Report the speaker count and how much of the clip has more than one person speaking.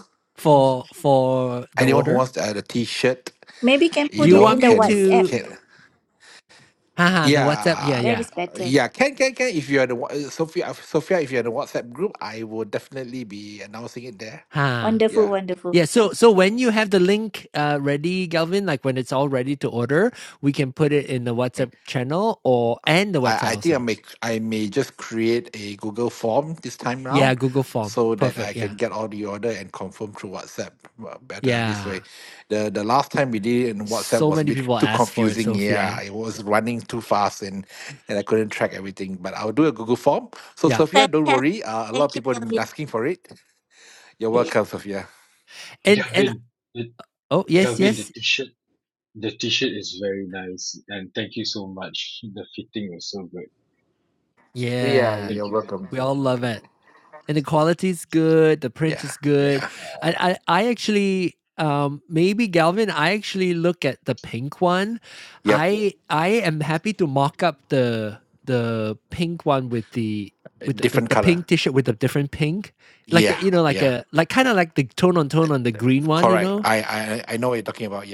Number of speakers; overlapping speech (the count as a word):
four, about 18%